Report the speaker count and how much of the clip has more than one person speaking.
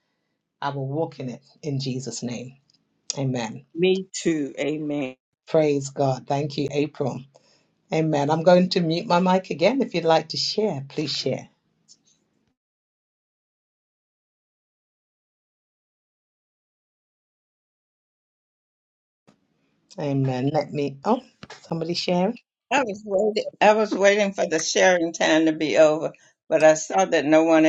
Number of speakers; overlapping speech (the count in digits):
3, no overlap